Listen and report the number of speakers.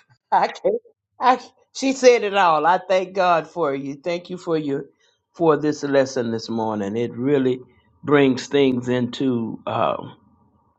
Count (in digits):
1